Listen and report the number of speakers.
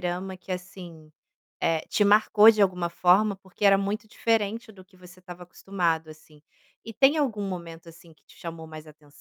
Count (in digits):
1